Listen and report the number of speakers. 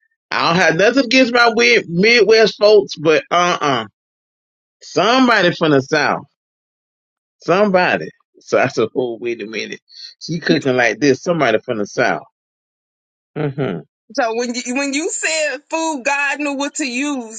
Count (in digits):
2